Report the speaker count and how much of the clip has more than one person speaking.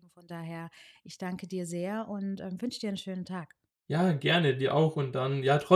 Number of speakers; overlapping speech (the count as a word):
two, no overlap